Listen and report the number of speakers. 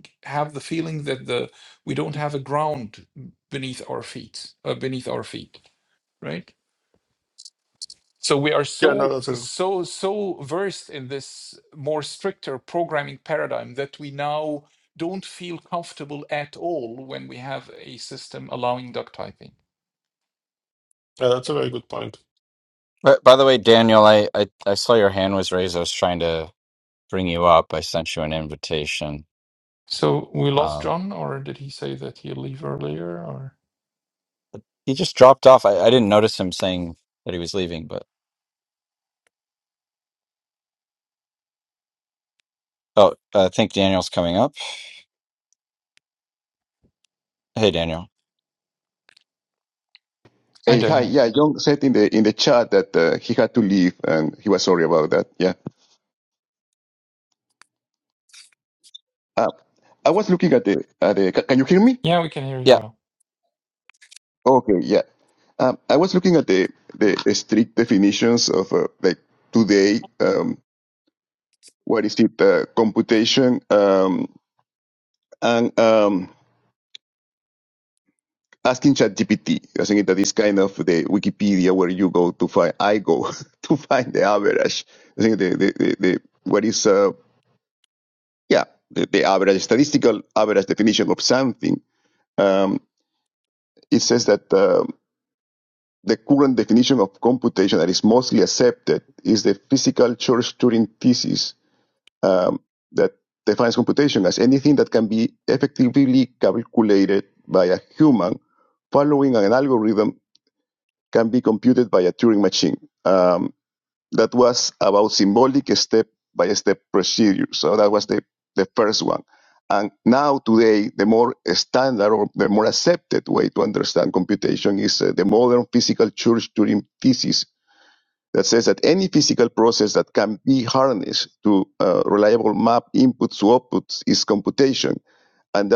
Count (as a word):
four